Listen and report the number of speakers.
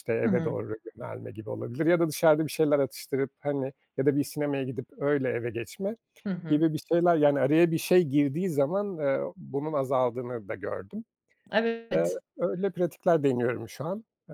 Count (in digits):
2